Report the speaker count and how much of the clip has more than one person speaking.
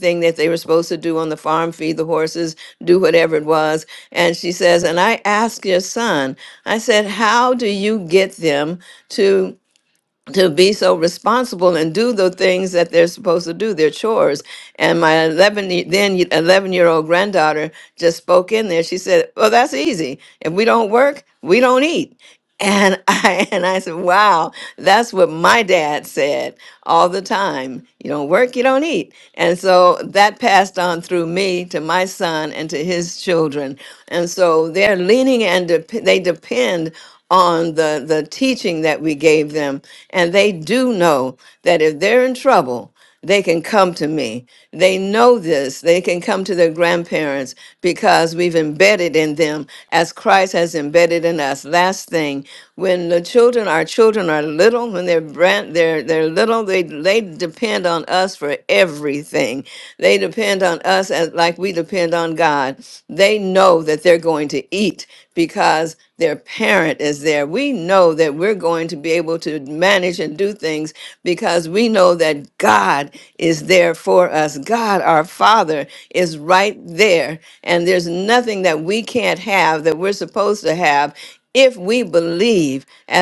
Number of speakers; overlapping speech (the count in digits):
1, no overlap